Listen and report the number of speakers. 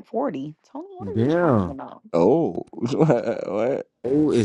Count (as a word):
three